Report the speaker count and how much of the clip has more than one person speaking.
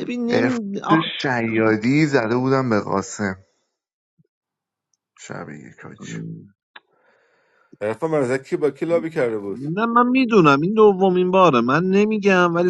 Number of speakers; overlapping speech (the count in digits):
3, about 6%